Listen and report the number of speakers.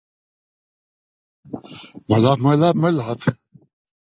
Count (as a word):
one